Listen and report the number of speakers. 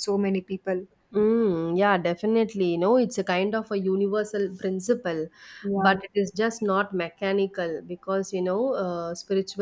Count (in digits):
2